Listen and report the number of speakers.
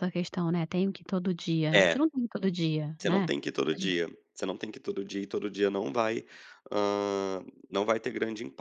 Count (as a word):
two